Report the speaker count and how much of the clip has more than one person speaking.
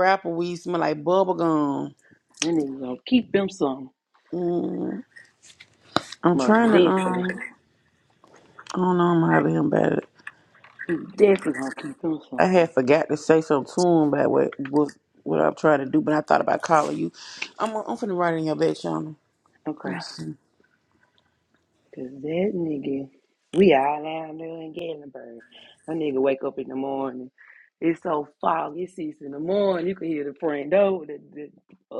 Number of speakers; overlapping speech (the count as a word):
two, about 4%